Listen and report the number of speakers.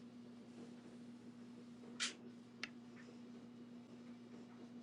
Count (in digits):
0